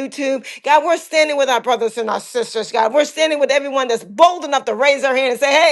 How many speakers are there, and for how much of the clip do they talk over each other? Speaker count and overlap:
1, no overlap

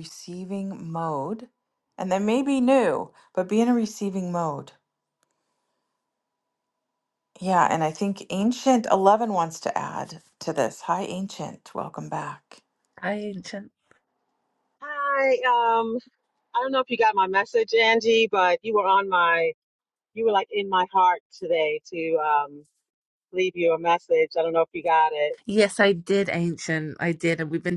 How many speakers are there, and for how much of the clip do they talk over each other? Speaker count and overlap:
3, no overlap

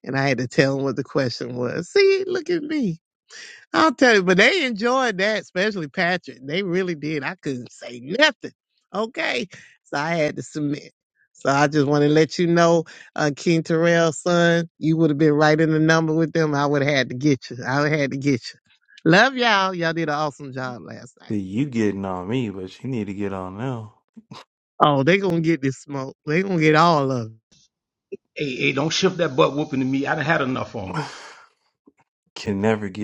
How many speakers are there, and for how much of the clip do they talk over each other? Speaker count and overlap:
3, no overlap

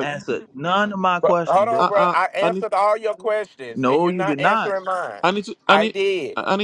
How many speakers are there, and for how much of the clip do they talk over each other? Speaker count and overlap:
3, about 41%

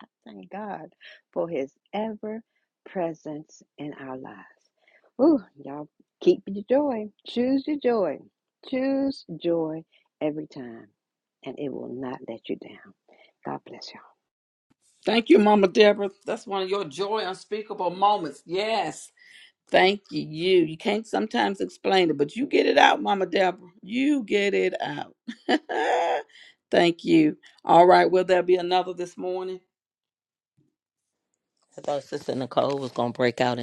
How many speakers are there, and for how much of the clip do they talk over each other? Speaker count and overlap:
3, no overlap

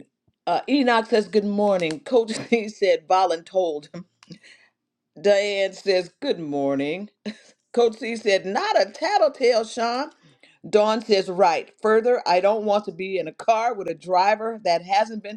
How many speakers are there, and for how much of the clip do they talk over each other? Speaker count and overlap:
1, no overlap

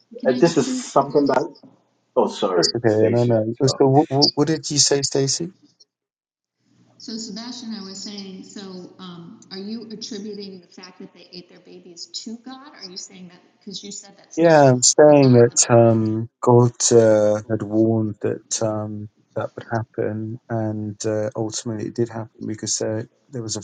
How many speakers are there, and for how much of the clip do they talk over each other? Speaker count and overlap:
3, about 13%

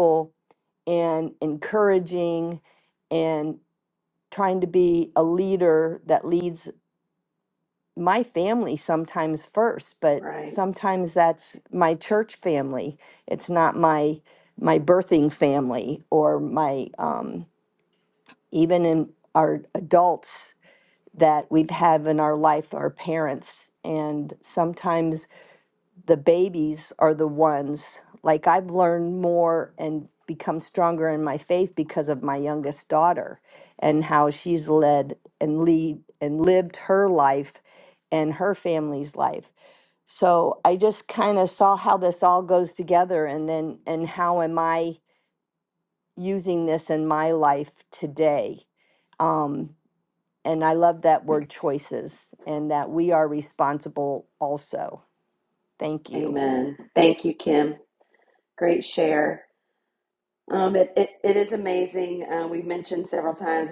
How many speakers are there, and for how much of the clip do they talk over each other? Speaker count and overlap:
2, about 1%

